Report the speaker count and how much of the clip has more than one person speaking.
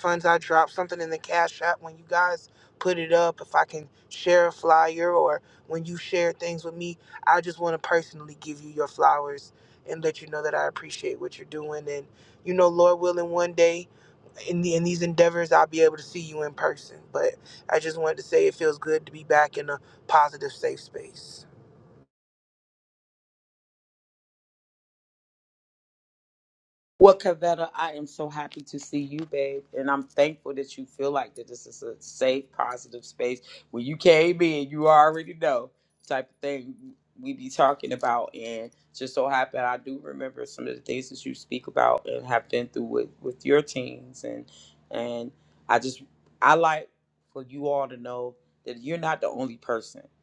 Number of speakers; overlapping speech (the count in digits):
2, no overlap